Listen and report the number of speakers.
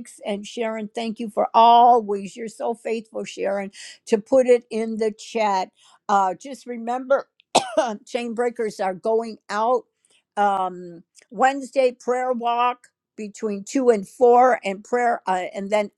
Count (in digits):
1